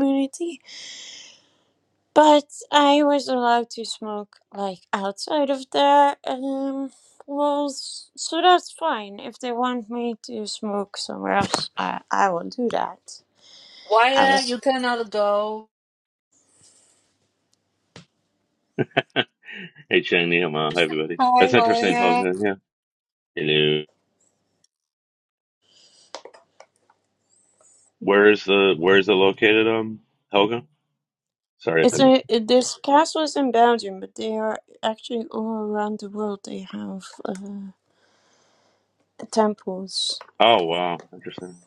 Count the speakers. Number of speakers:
3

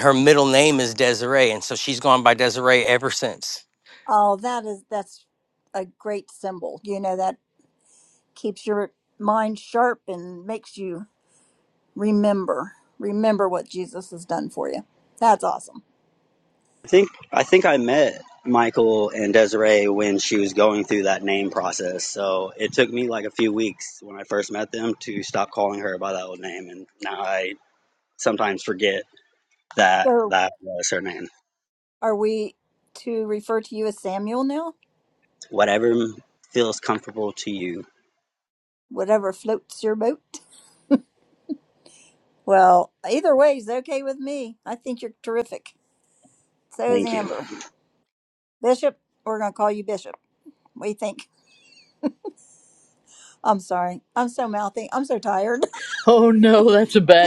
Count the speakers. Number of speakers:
4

